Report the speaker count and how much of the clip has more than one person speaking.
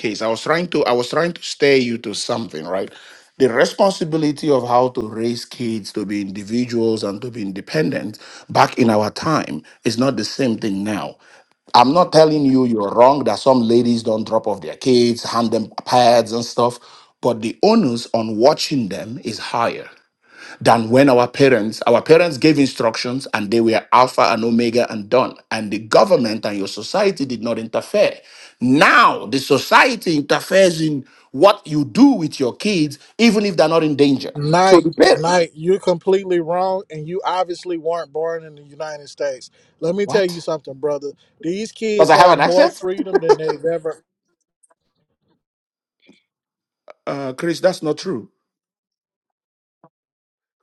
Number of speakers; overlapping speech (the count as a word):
two, about 4%